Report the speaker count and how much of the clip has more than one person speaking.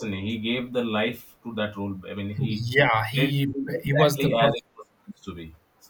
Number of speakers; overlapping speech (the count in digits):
2, about 24%